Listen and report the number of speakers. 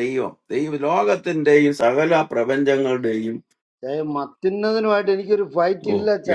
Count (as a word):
two